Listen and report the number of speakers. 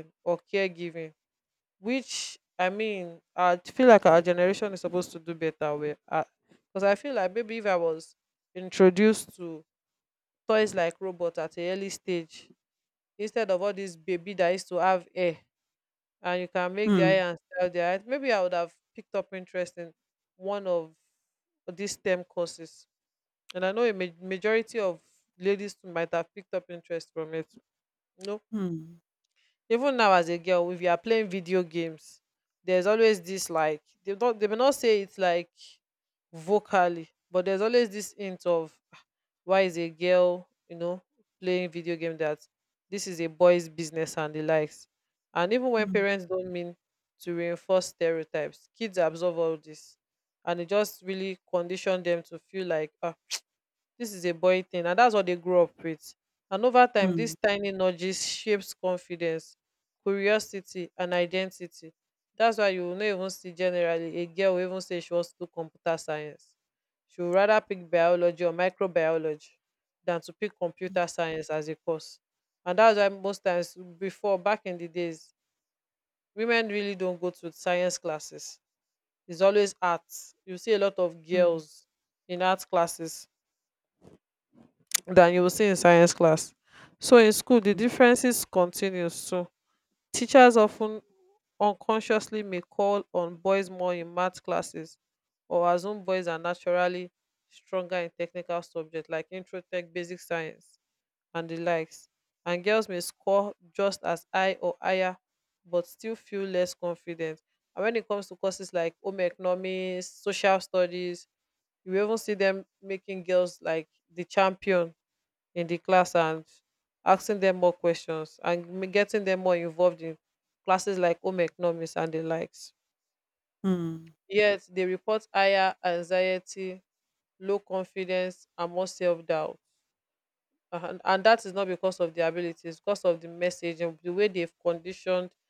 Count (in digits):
2